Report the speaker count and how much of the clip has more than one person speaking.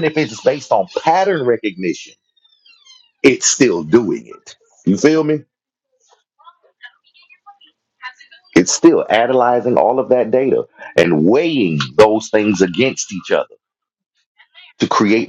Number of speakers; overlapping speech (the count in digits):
1, no overlap